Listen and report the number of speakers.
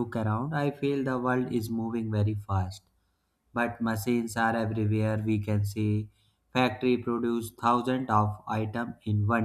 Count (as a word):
one